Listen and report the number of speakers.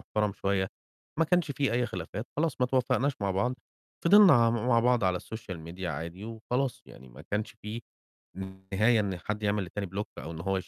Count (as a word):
one